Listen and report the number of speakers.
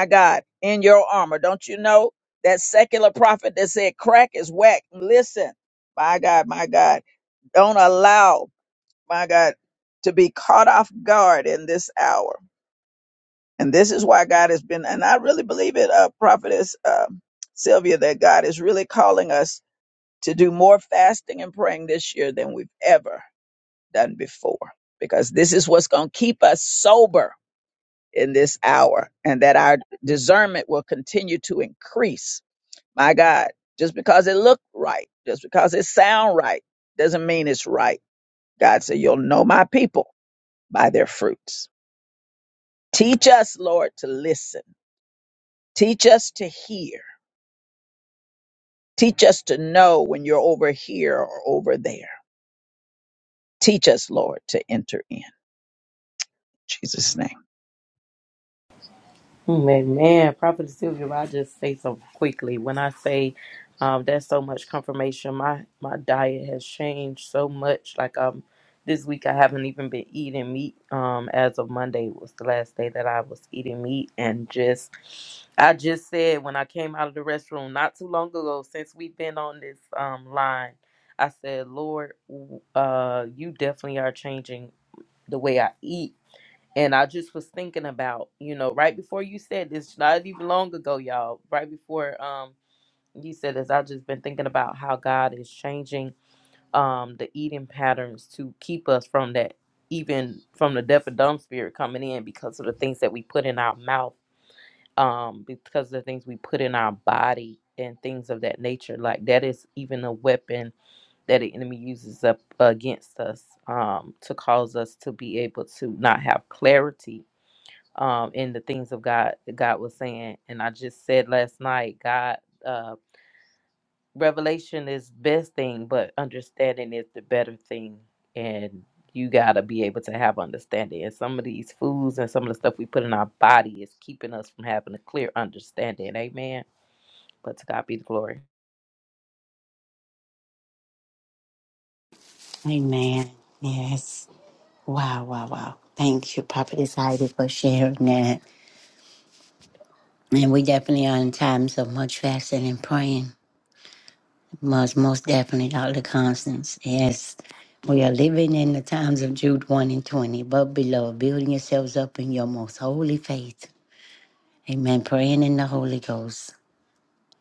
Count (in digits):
3